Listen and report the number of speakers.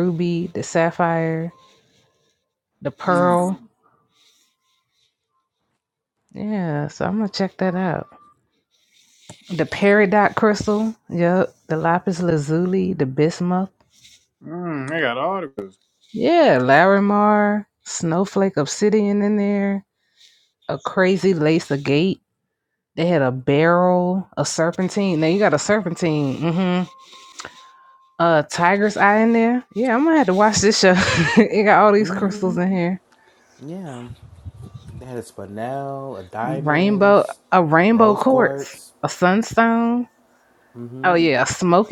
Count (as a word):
three